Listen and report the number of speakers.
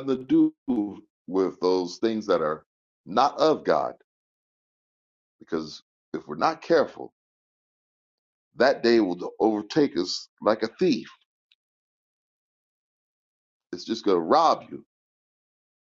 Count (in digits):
1